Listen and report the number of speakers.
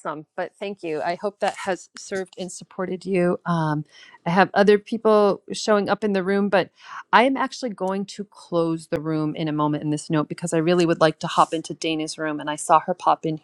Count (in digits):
1